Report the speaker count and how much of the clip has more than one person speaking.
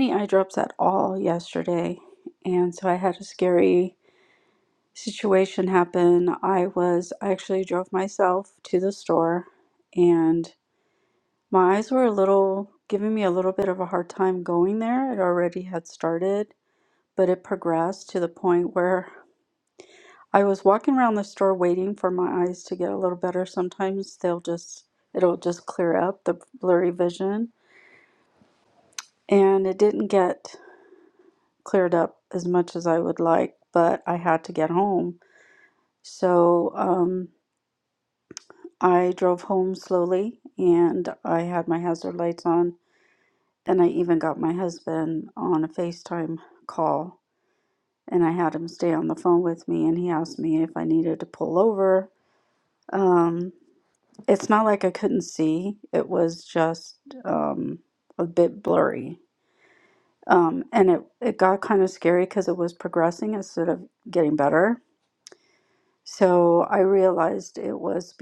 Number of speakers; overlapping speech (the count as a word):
one, no overlap